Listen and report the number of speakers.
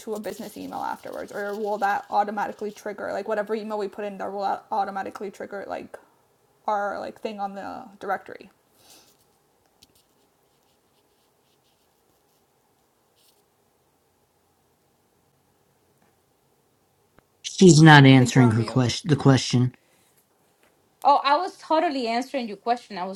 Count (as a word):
three